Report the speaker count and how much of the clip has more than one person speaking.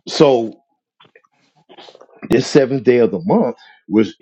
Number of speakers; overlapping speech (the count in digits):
1, no overlap